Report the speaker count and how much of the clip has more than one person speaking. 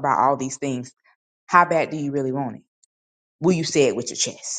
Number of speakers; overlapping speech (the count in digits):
1, no overlap